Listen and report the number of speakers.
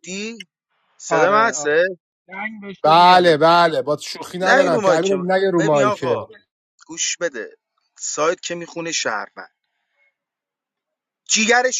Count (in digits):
3